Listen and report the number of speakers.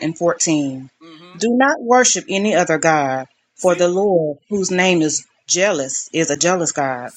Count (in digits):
1